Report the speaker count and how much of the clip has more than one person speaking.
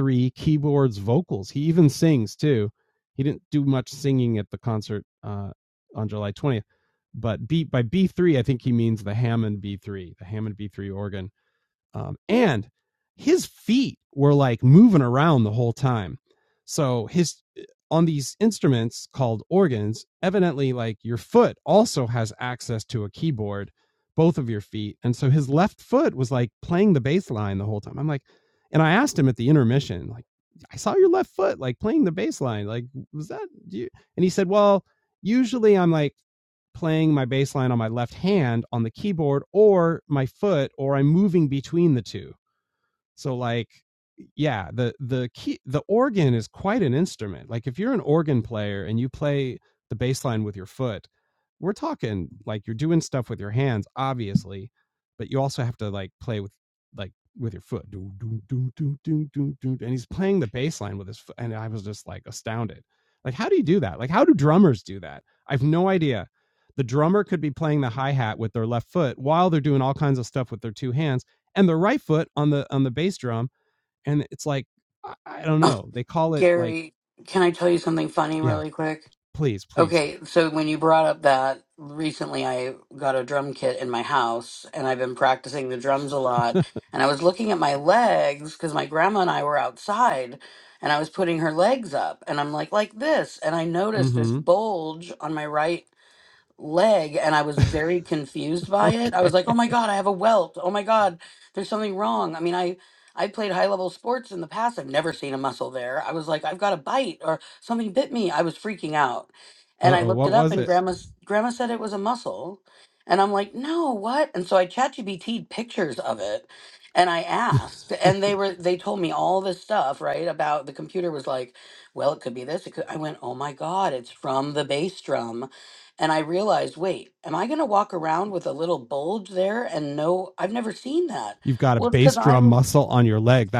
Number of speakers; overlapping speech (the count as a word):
two, about 3%